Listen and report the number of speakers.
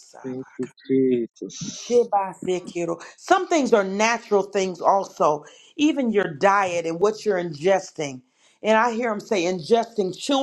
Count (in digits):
2